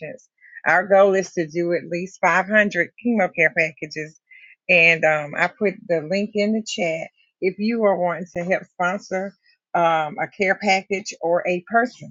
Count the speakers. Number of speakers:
1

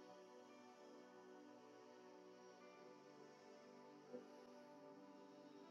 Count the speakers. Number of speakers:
0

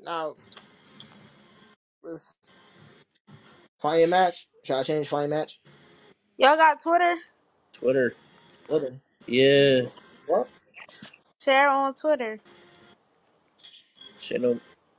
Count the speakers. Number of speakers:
3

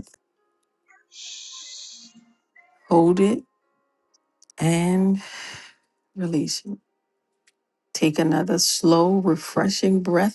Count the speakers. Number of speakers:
1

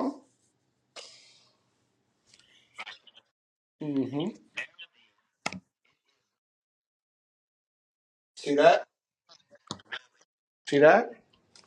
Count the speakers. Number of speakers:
1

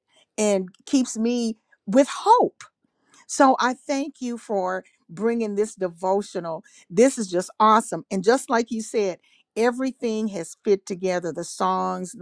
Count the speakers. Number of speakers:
1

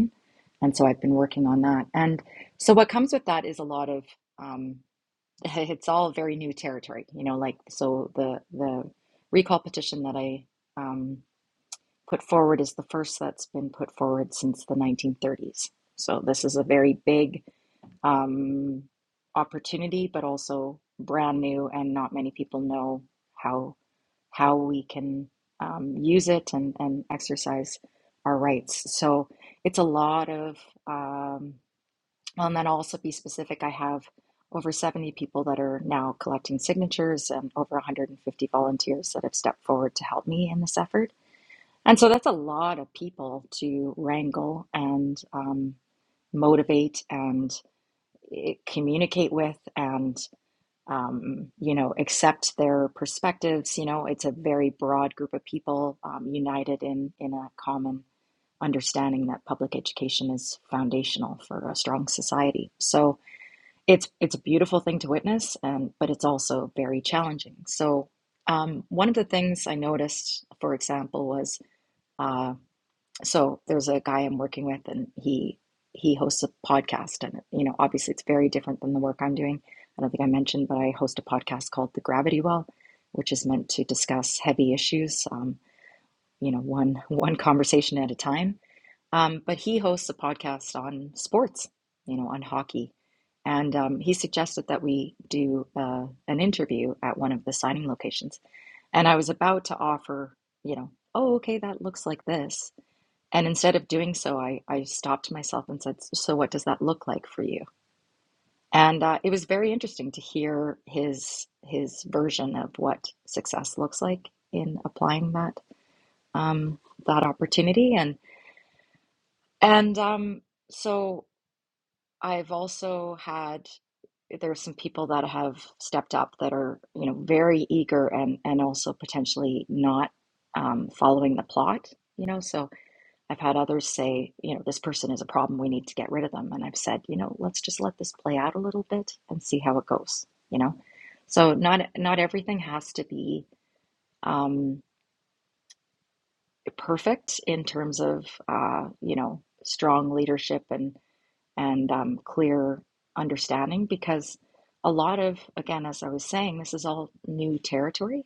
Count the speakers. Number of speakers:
1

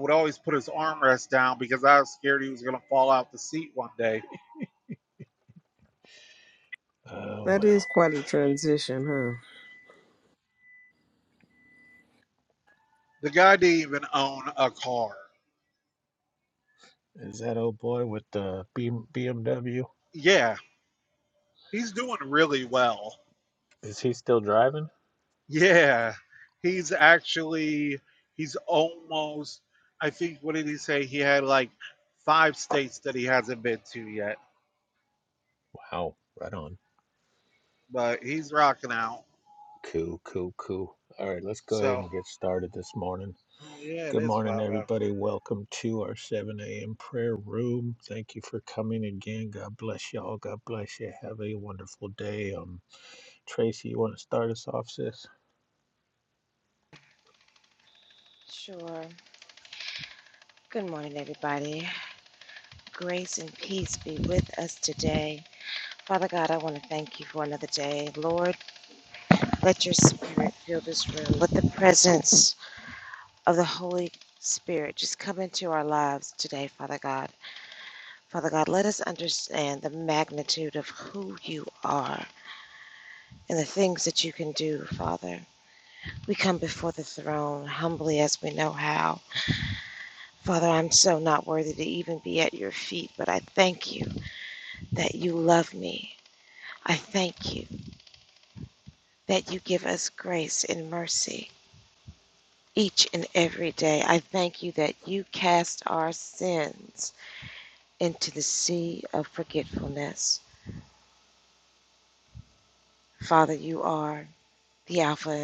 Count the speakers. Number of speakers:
4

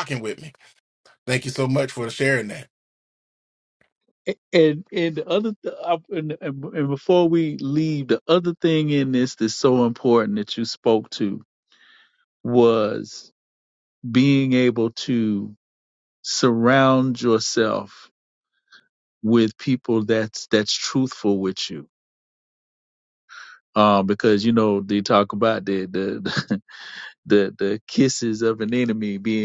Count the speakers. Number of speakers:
2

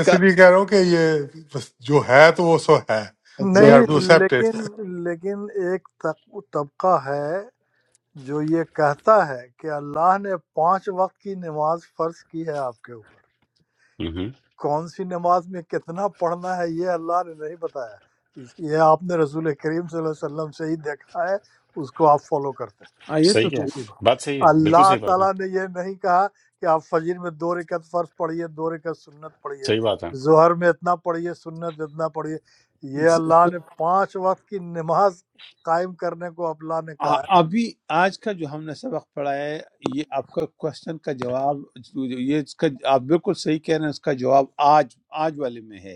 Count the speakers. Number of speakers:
4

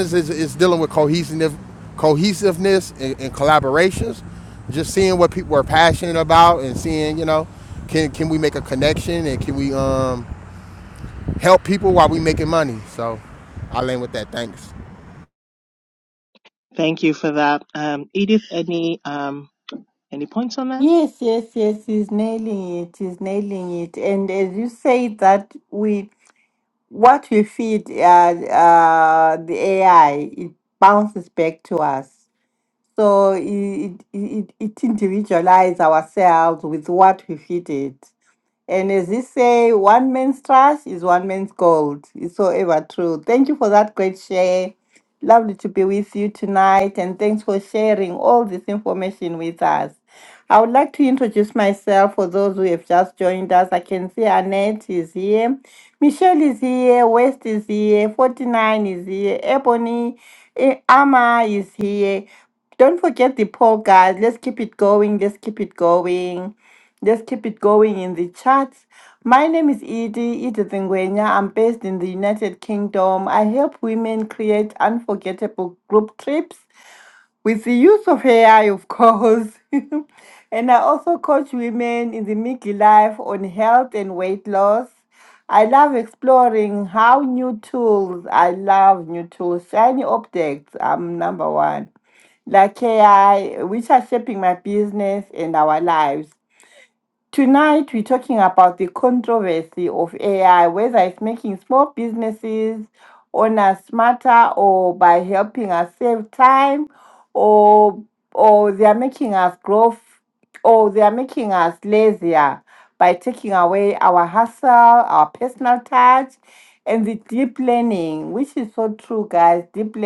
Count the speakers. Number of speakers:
3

